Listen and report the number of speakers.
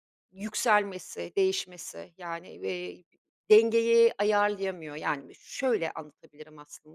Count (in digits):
1